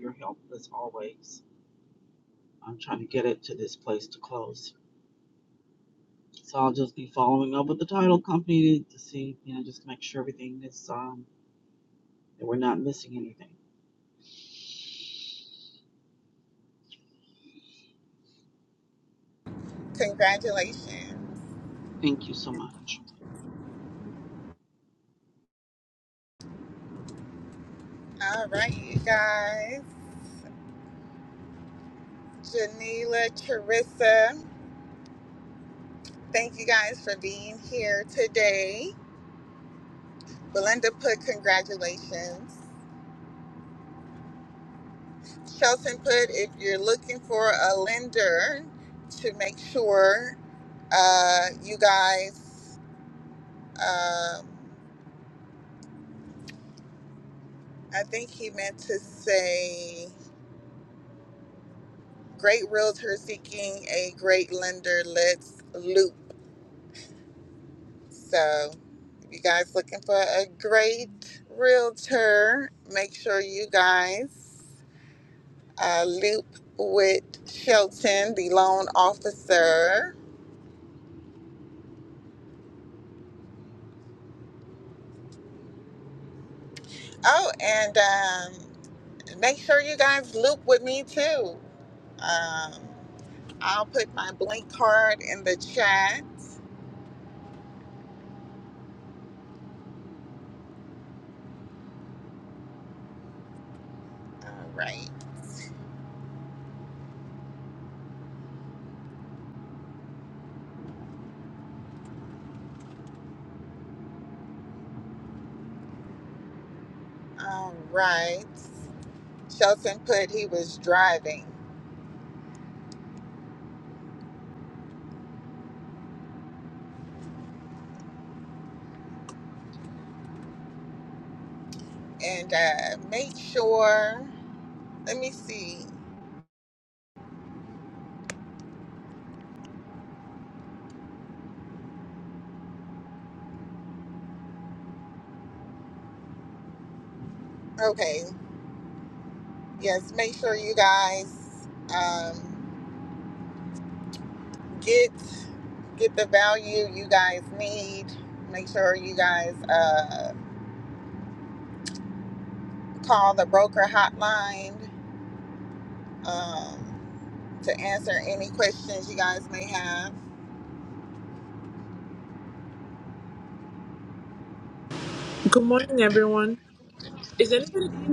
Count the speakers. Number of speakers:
3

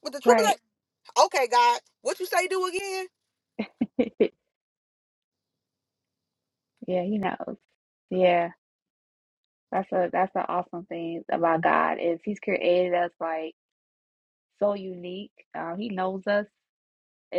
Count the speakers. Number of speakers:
2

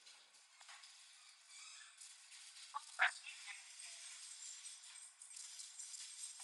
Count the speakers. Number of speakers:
0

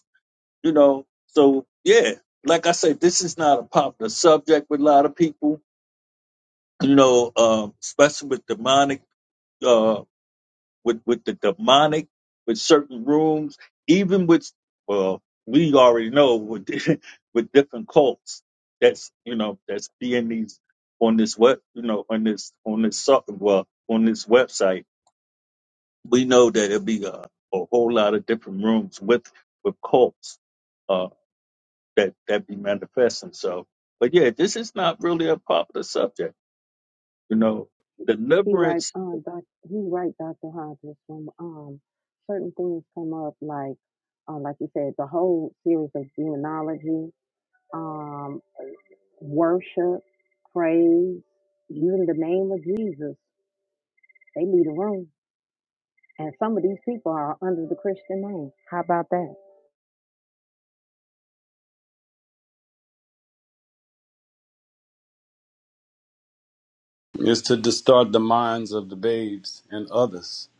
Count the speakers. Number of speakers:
3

